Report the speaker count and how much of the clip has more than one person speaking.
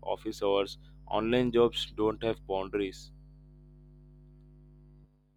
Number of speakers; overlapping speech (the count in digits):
1, no overlap